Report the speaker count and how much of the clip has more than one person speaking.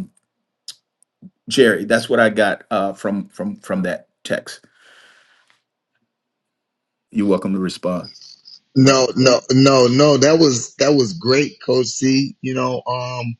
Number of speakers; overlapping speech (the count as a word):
two, no overlap